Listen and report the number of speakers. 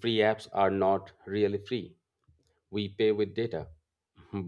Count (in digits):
1